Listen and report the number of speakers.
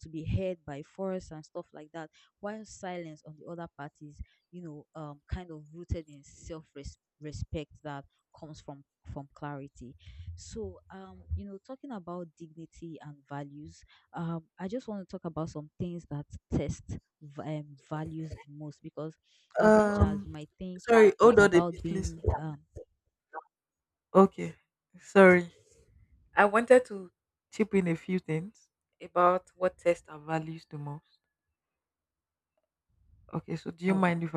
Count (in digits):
2